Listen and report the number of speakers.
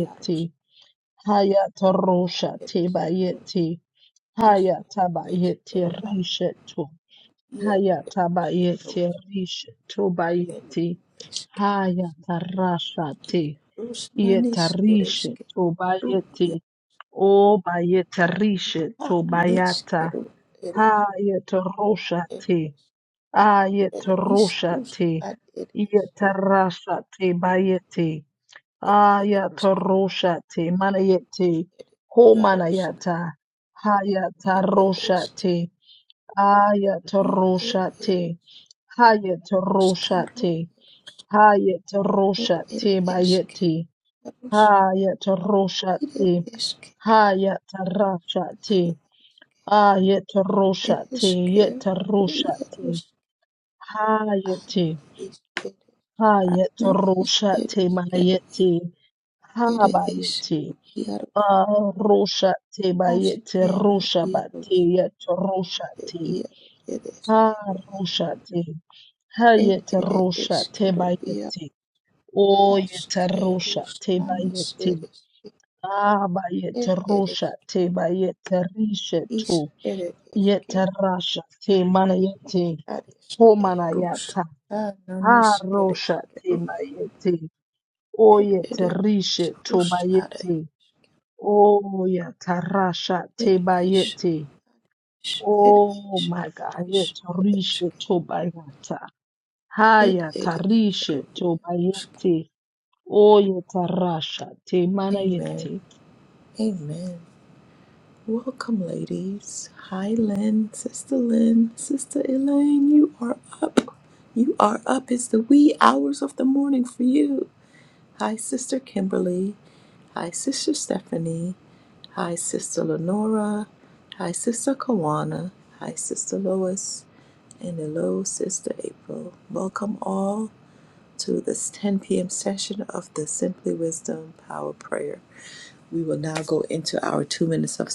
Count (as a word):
two